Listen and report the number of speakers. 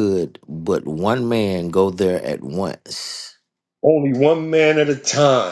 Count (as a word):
two